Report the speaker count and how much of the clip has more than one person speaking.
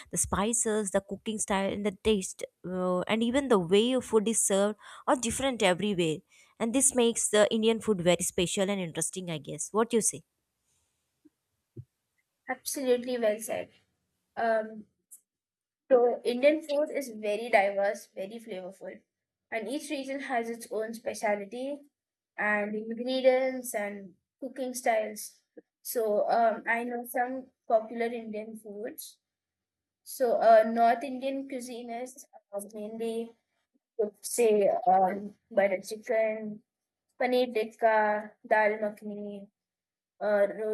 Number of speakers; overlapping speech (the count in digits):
2, no overlap